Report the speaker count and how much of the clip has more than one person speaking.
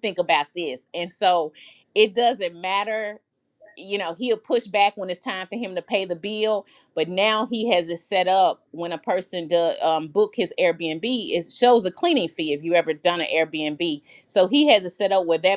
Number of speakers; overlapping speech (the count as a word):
one, no overlap